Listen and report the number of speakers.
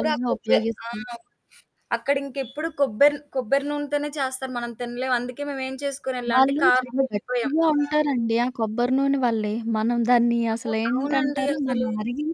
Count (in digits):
2